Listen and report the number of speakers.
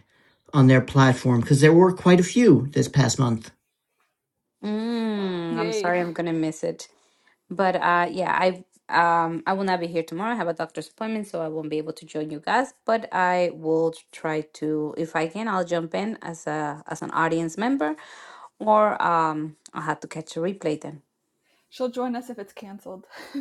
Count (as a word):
three